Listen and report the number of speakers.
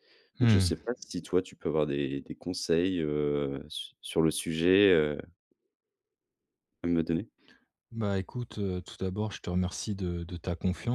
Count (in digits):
2